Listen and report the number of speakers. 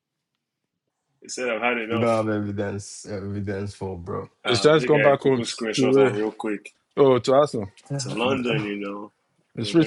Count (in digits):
3